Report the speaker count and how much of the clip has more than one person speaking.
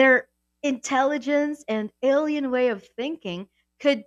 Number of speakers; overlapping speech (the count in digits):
1, no overlap